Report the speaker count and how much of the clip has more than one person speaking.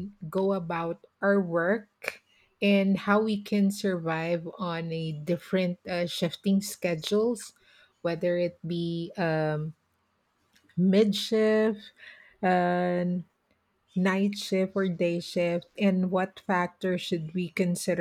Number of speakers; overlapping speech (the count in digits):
1, no overlap